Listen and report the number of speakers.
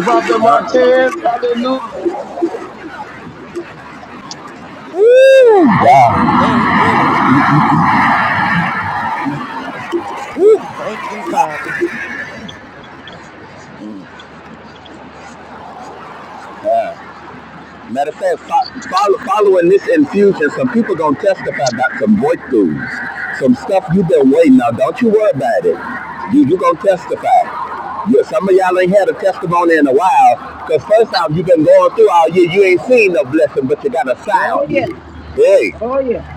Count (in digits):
4